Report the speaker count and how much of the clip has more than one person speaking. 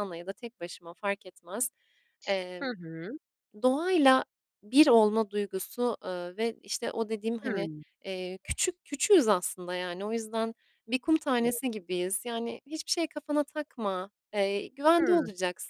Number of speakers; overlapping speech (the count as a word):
two, about 6%